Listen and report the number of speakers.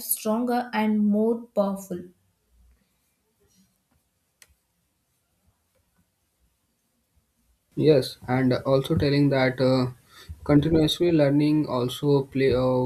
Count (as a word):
two